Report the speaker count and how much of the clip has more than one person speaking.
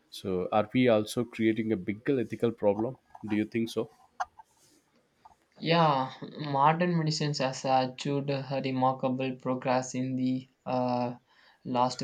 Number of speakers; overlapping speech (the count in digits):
2, no overlap